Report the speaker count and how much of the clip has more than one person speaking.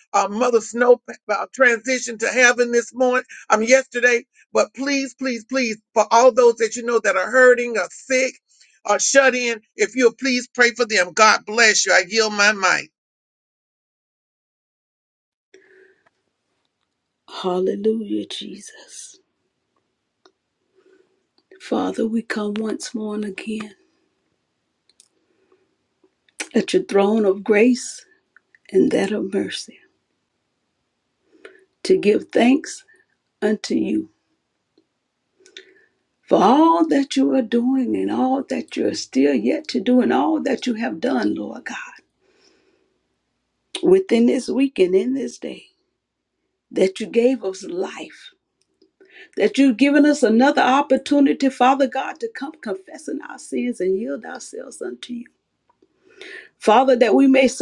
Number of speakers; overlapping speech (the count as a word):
two, no overlap